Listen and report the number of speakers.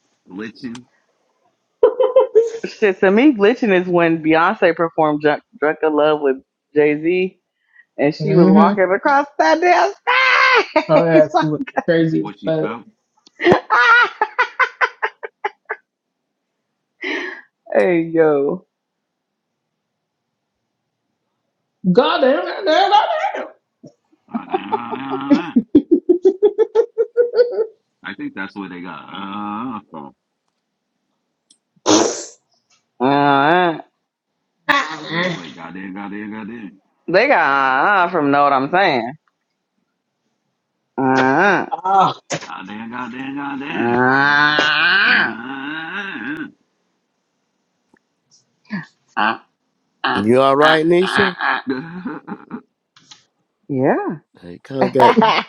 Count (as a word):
four